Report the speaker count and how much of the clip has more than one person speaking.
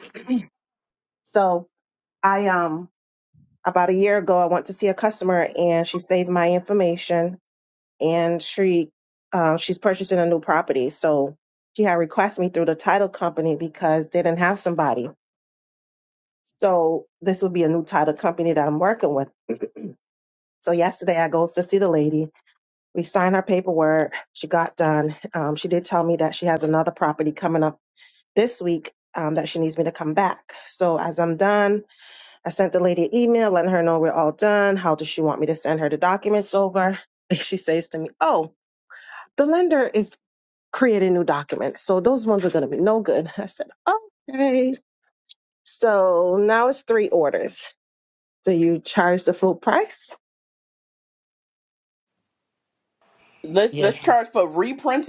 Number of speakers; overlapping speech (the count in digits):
2, no overlap